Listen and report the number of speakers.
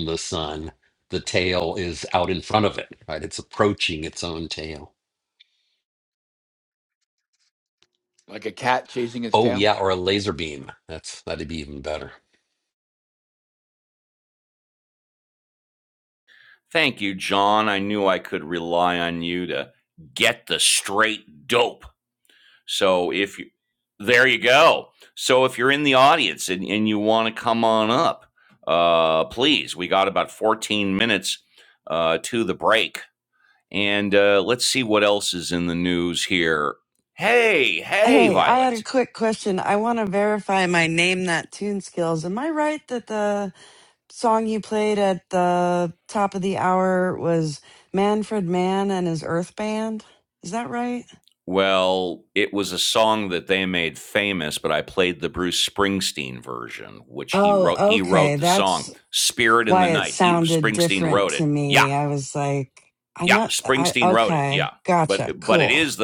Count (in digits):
4